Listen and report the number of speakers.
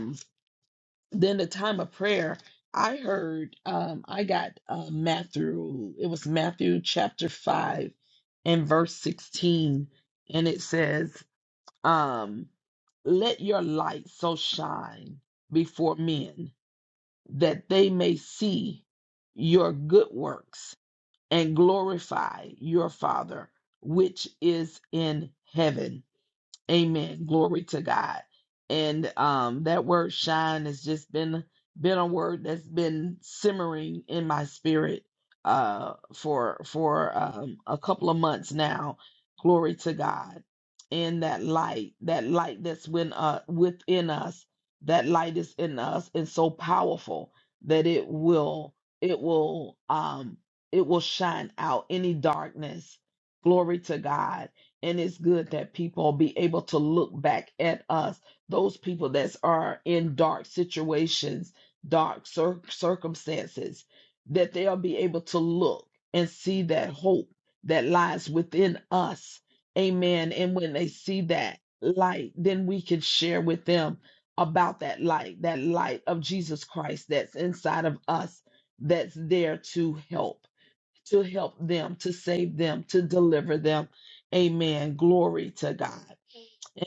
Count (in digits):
1